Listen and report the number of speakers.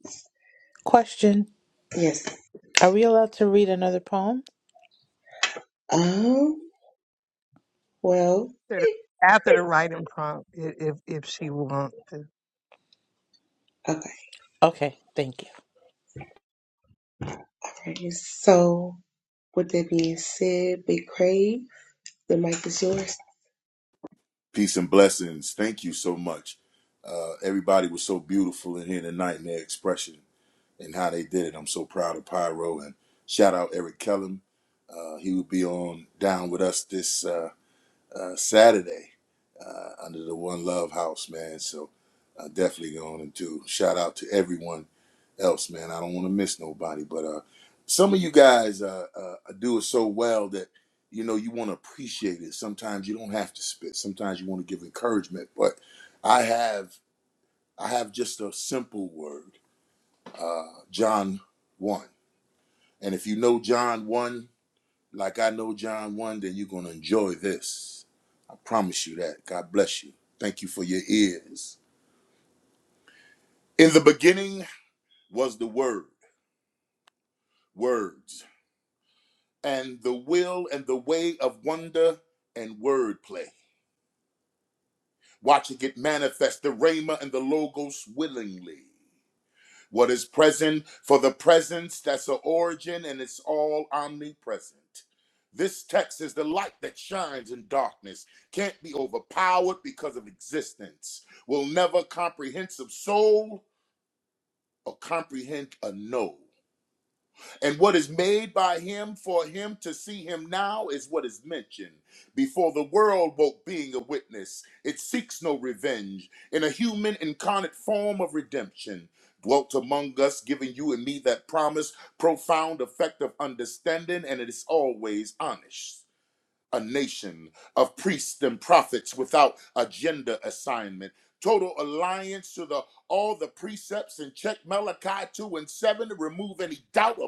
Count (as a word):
four